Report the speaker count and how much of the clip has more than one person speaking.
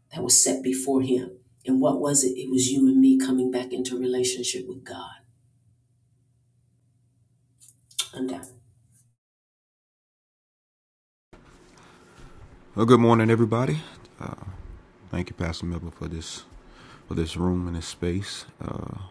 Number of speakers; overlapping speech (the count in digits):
2, no overlap